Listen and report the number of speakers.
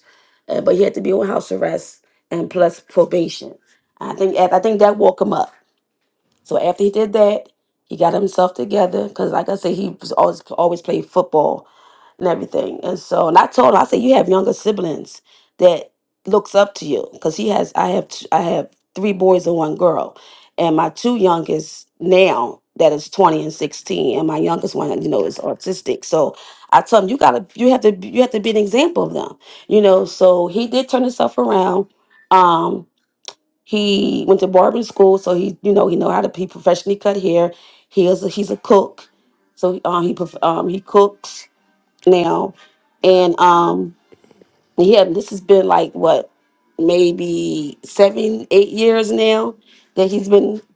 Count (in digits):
1